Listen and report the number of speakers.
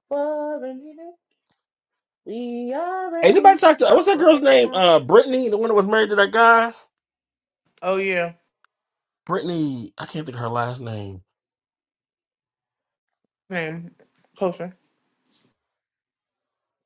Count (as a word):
three